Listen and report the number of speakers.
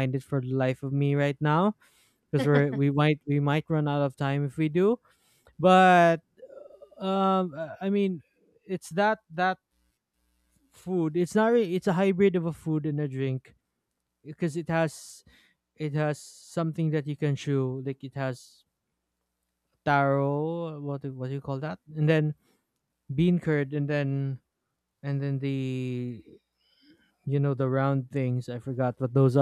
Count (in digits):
1